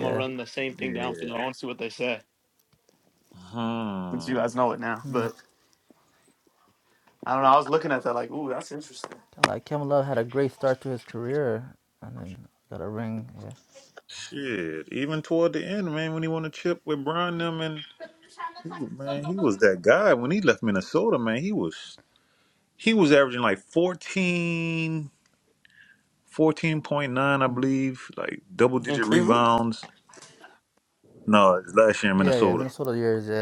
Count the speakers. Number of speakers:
3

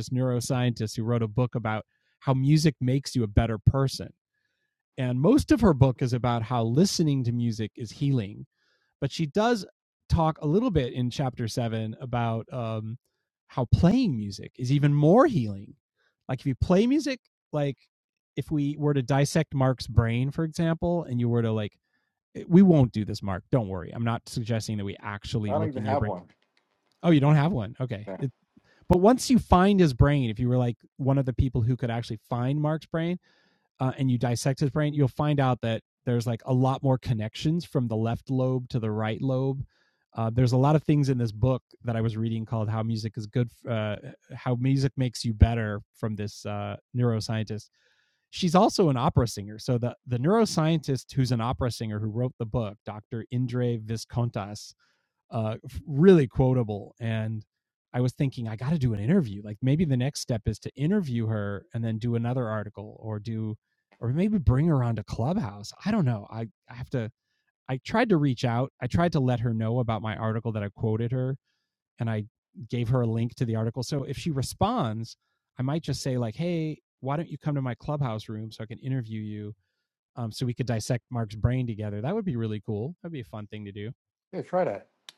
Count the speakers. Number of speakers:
2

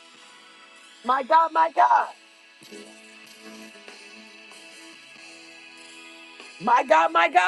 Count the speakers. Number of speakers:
1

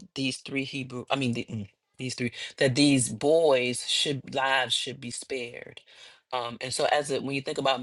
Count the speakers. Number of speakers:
1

